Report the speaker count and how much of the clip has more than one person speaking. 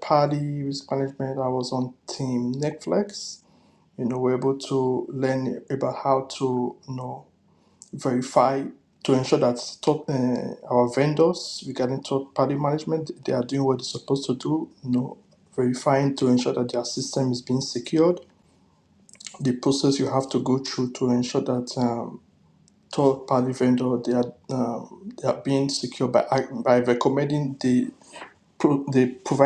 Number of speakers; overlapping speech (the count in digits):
1, no overlap